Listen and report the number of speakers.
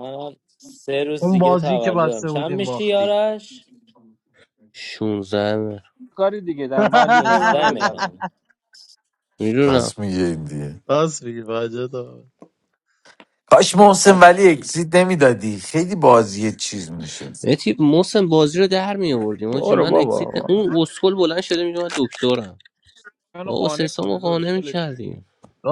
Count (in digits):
5